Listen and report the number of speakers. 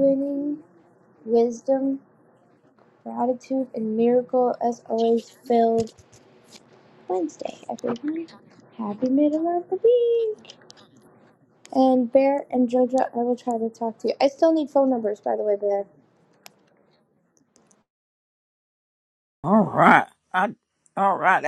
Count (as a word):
two